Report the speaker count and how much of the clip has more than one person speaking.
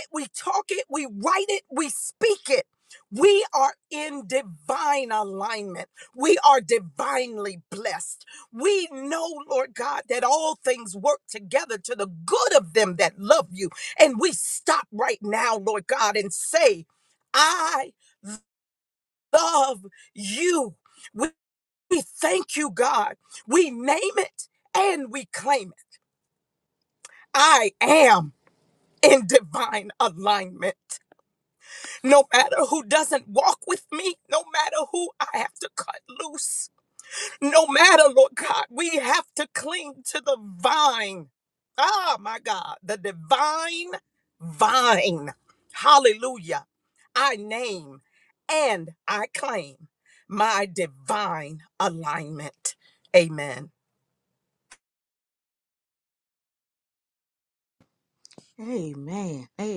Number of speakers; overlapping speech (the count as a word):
two, no overlap